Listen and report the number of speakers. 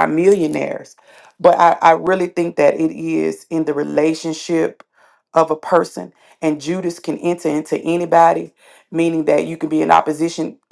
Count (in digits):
1